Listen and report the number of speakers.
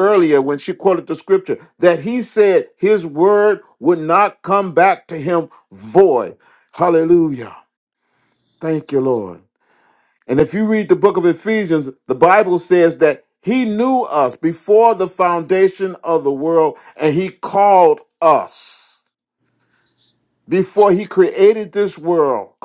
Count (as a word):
one